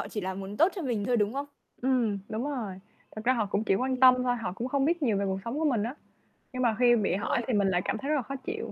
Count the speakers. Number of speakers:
2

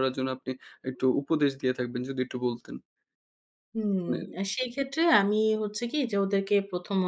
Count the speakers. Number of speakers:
2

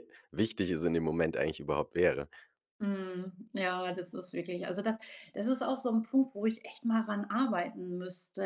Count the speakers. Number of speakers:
2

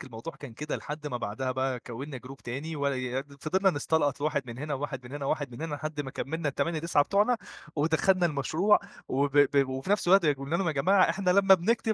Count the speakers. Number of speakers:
1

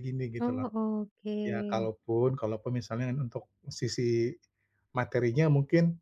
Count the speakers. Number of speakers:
2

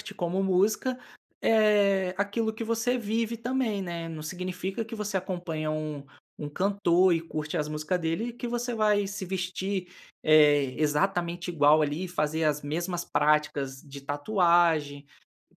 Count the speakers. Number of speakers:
1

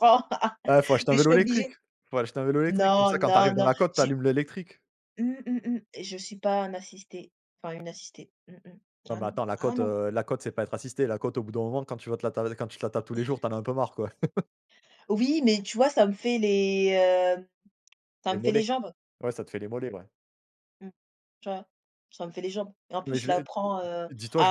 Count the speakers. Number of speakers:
2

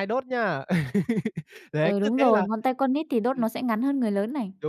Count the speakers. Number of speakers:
2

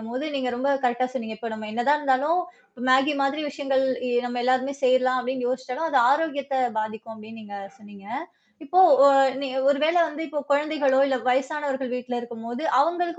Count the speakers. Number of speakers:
1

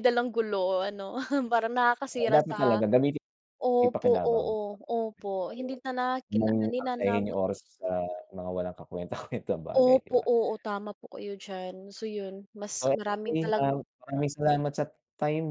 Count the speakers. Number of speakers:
2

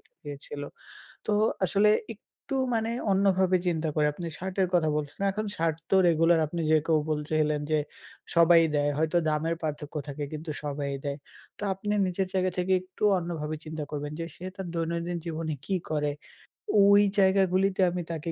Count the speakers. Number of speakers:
1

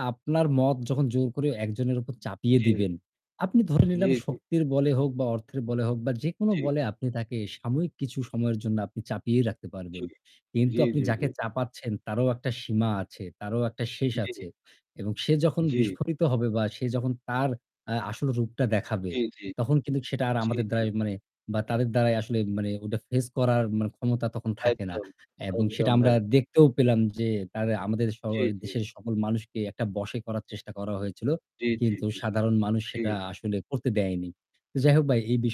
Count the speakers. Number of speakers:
2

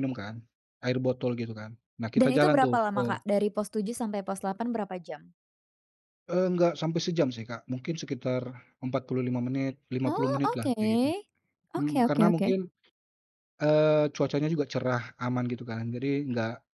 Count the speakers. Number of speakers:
2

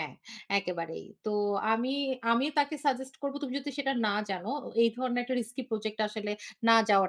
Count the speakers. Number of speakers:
1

